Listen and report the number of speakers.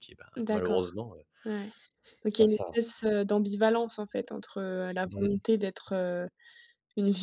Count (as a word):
two